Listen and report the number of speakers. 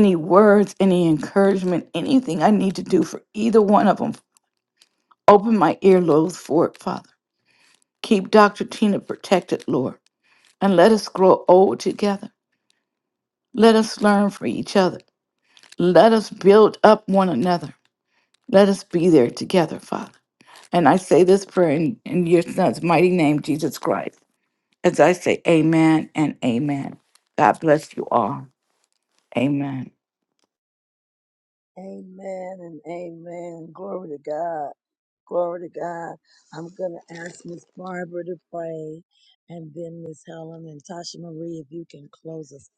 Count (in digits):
2